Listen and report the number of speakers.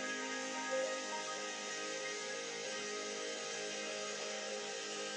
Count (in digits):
0